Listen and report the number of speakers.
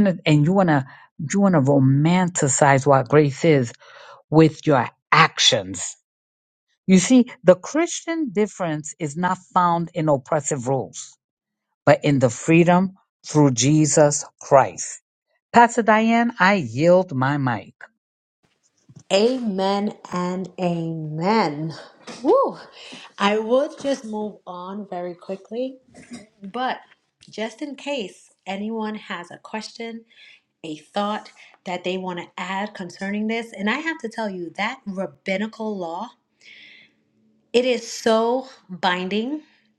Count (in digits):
2